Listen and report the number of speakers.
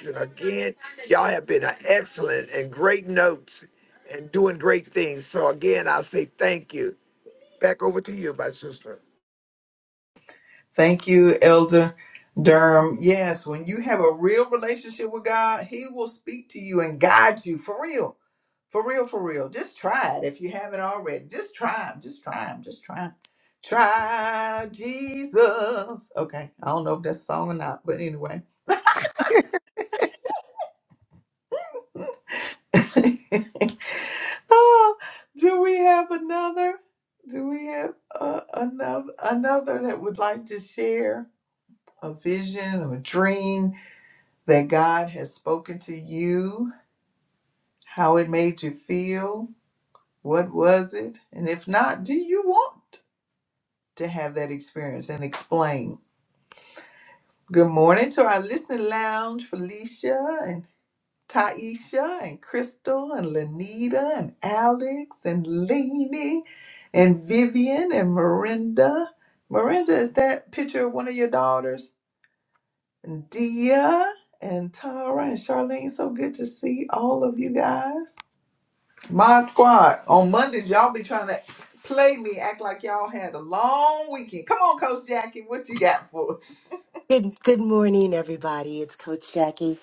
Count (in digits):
3